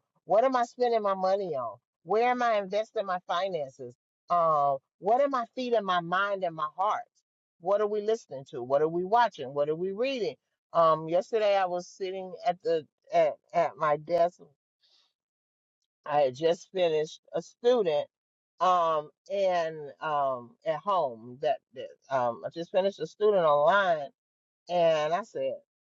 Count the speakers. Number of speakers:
1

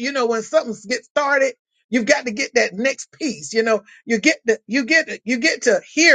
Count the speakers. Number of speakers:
1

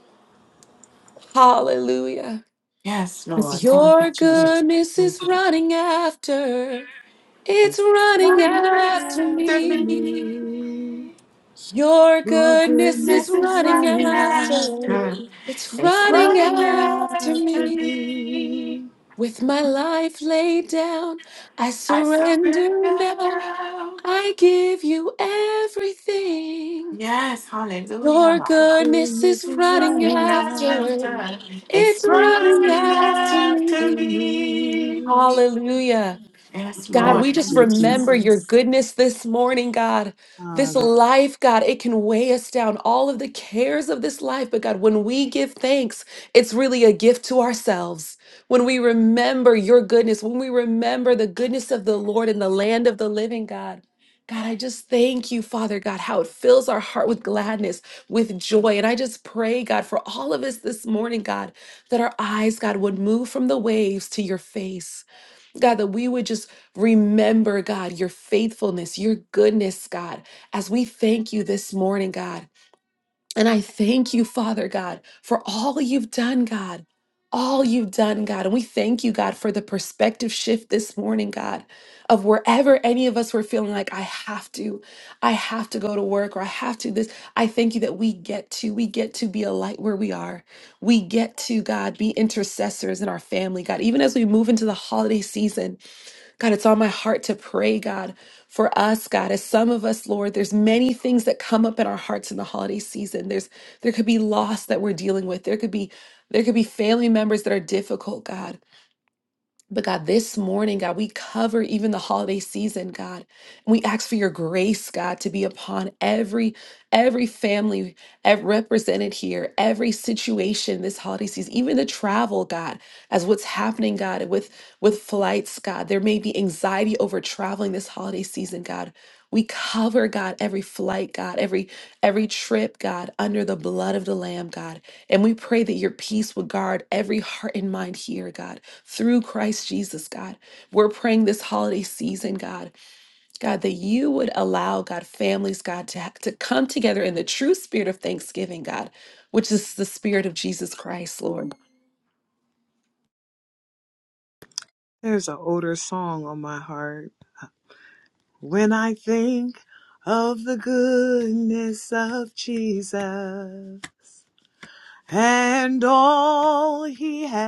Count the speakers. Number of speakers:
3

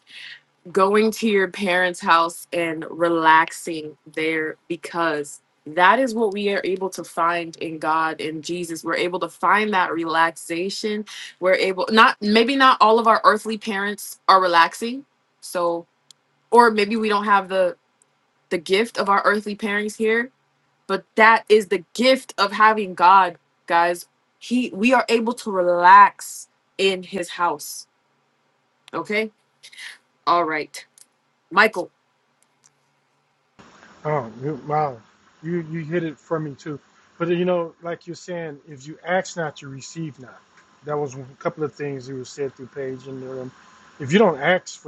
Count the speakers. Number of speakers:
2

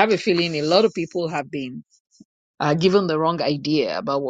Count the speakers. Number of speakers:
1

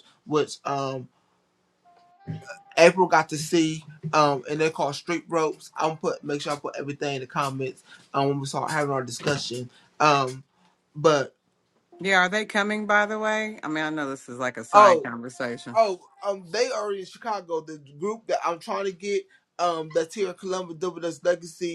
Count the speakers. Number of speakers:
2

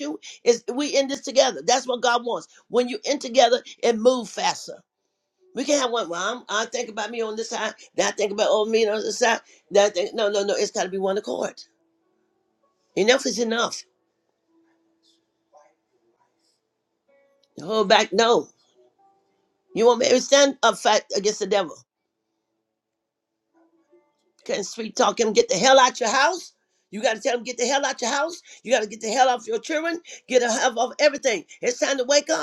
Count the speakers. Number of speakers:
1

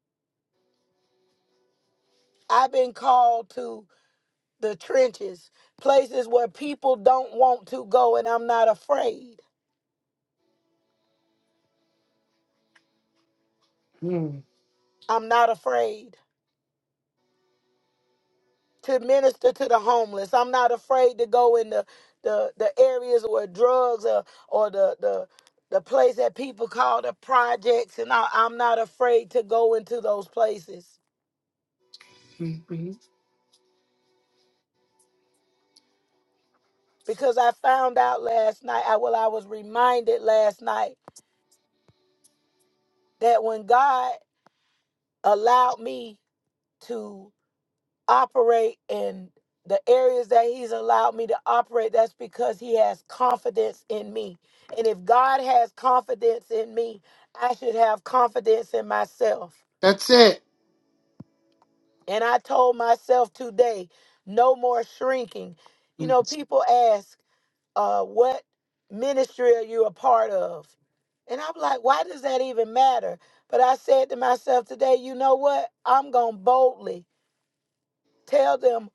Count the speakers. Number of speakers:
2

